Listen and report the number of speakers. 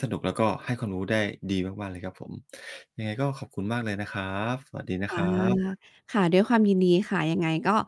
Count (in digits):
2